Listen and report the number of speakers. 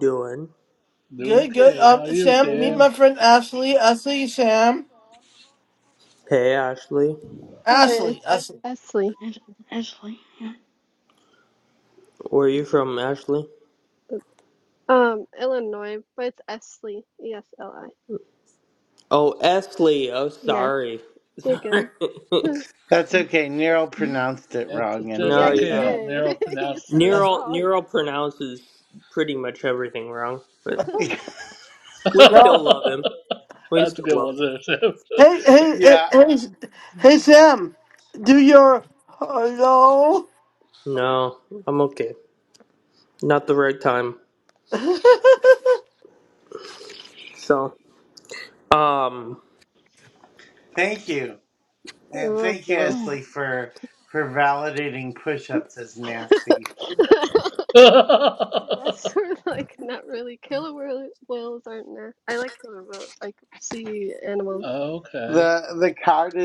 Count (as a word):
six